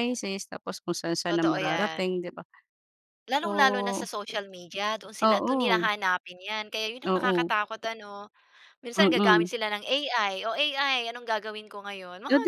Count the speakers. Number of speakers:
two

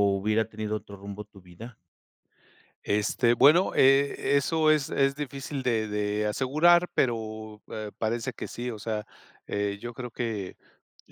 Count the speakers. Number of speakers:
two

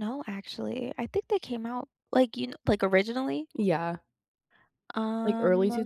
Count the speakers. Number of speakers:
two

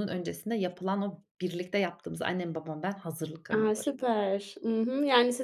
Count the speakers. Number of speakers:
two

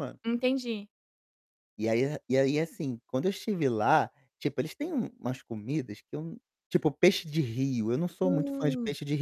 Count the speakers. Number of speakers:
two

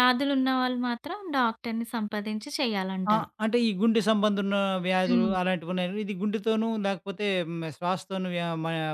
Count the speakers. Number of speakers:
two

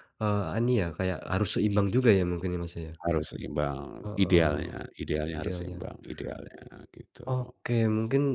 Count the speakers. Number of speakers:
two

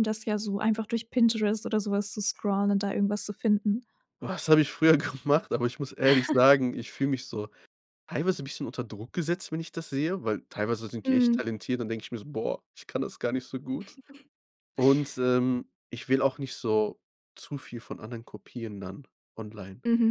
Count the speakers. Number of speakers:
two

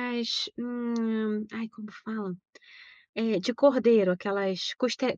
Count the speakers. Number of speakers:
one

